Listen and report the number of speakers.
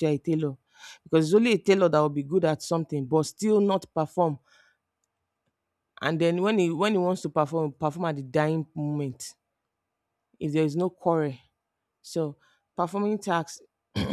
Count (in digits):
1